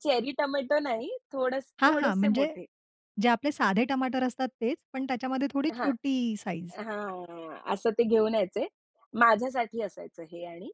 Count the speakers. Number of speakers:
two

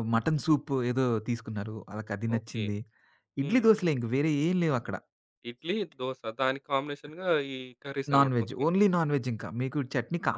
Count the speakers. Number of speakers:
two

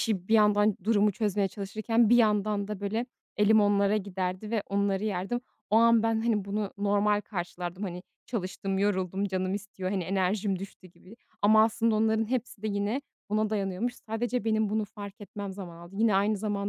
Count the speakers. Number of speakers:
one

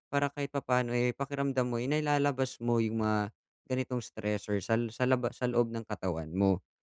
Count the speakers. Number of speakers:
one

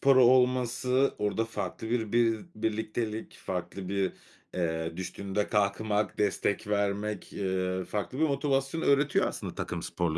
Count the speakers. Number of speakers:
one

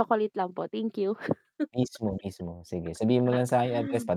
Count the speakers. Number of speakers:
two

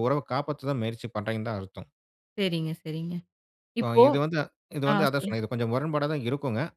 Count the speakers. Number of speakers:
two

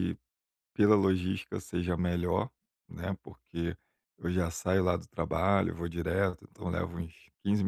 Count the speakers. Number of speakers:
one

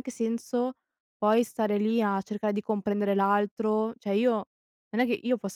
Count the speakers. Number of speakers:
one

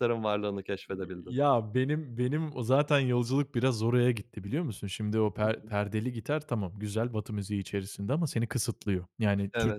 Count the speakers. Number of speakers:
two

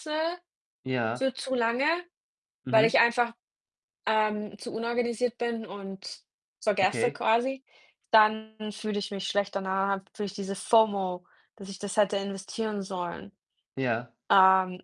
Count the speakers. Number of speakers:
two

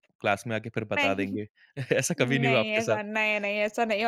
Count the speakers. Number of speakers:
two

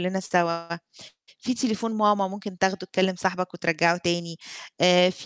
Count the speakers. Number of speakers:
one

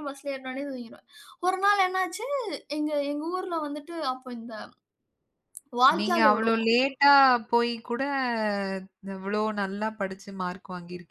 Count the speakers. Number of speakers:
two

